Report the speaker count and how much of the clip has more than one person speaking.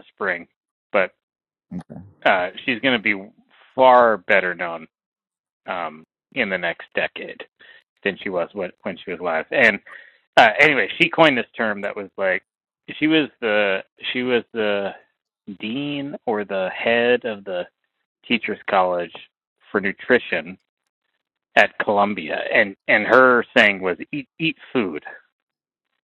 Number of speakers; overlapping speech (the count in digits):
1, no overlap